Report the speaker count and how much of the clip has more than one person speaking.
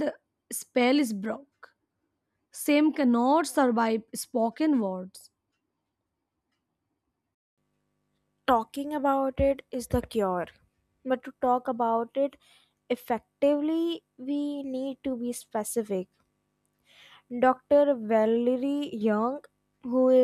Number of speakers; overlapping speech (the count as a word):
two, no overlap